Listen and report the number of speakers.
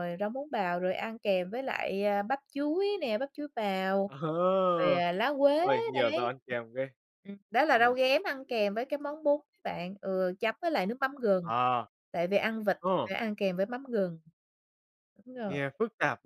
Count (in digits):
2